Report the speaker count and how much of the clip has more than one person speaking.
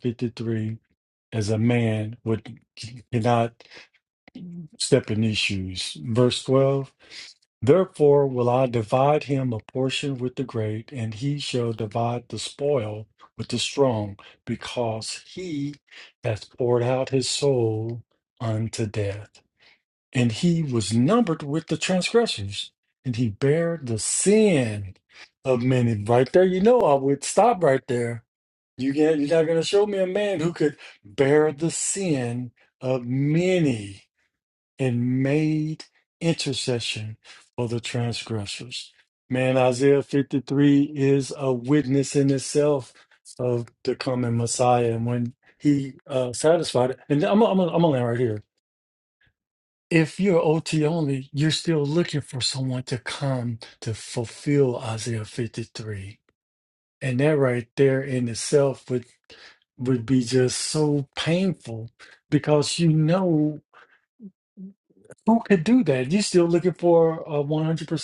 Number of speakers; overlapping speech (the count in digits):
1, no overlap